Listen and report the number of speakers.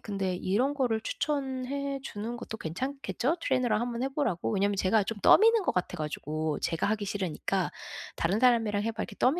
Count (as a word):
one